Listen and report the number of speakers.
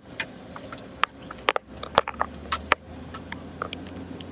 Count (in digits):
0